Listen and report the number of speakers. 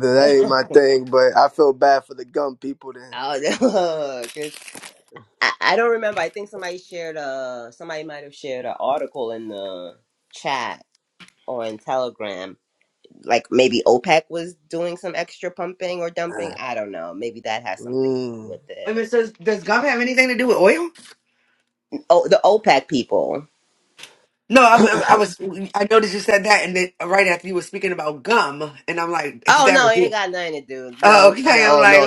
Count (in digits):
3